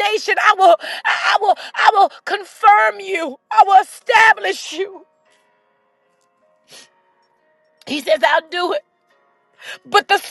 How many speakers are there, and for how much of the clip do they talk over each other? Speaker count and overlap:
one, no overlap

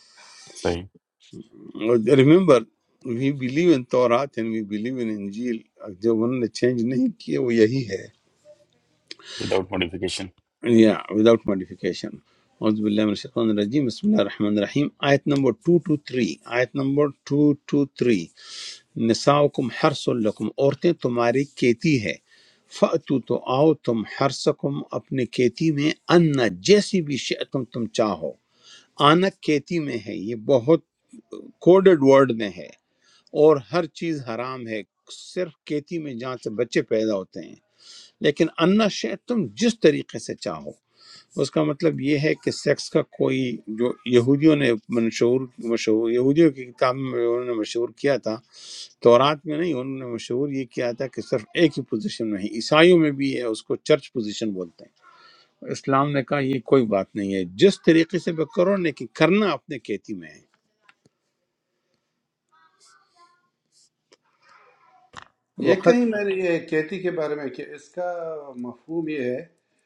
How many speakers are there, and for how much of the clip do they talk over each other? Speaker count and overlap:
three, under 1%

